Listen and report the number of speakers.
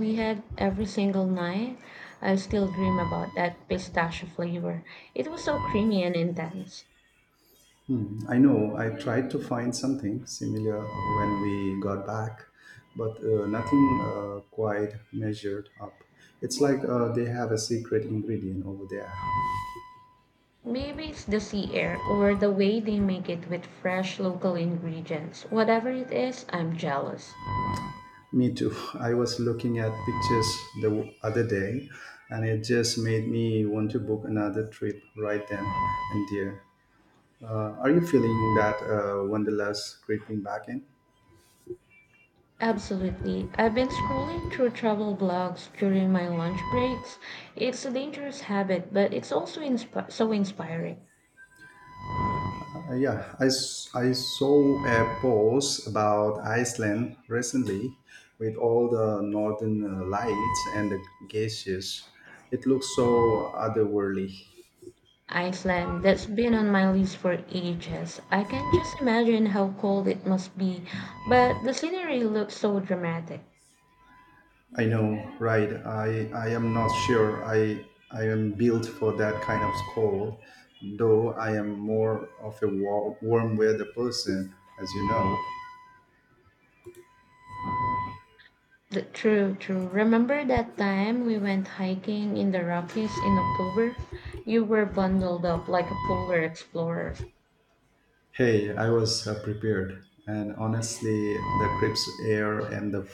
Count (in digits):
2